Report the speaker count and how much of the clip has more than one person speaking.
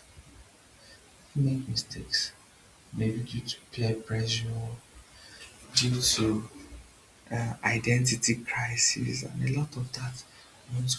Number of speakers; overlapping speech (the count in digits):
1, no overlap